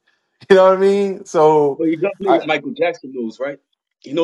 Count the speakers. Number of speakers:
two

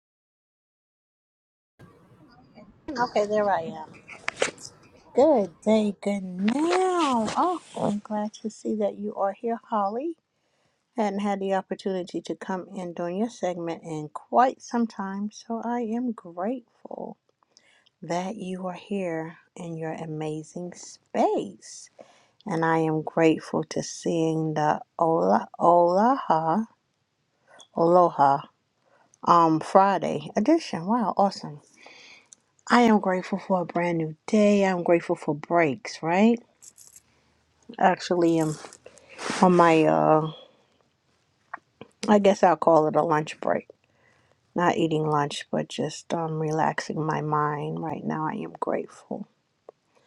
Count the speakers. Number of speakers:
one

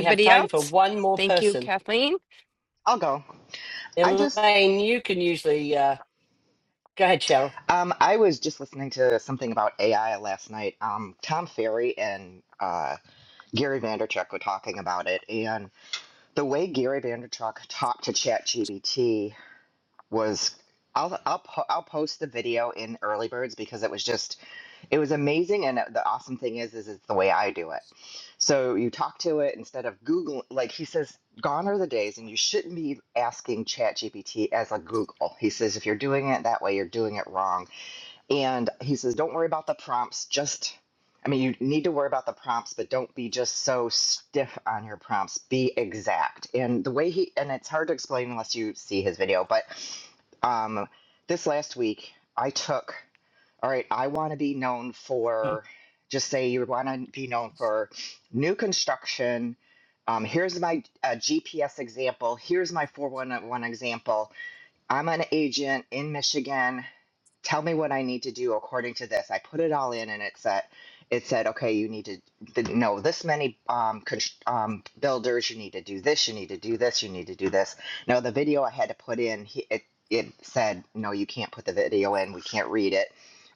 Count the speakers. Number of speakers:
three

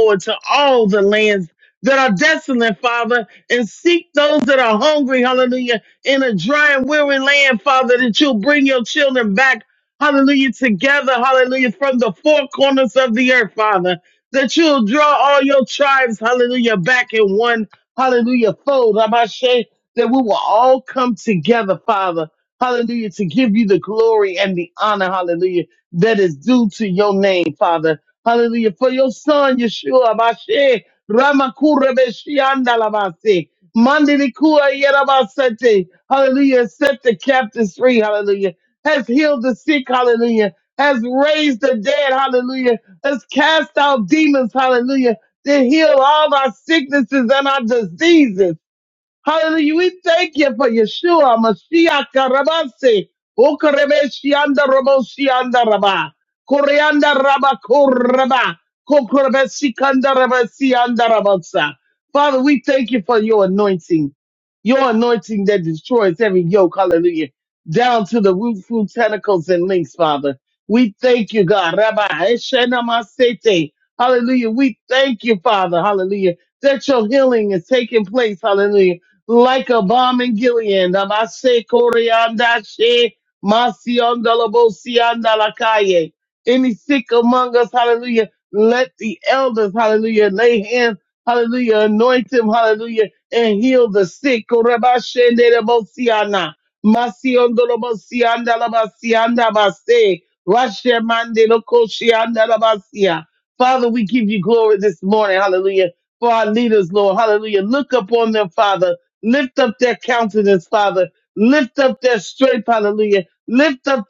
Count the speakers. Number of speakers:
one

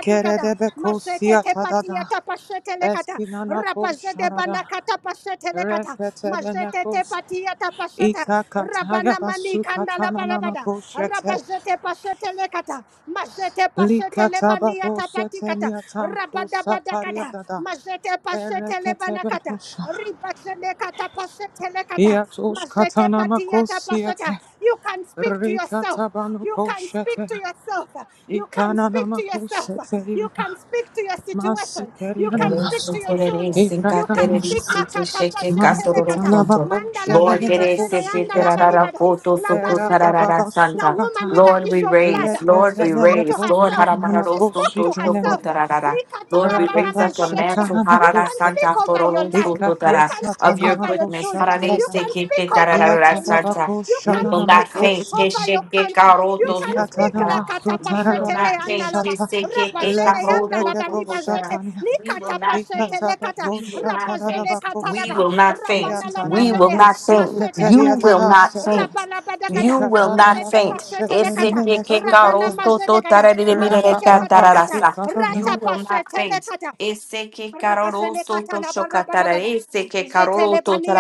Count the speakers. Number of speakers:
three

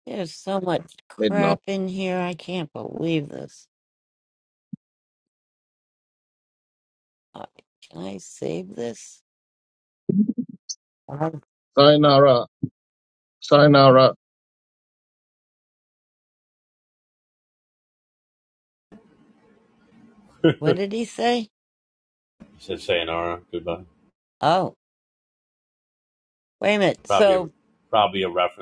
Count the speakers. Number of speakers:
three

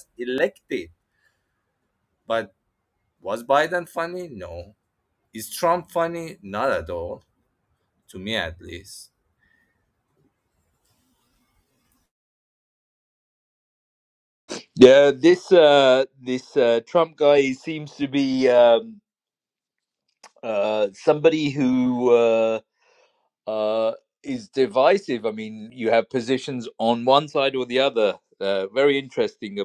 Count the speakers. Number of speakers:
two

